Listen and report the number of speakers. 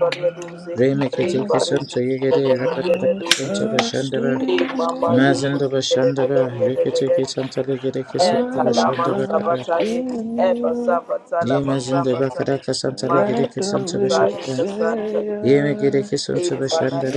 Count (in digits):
3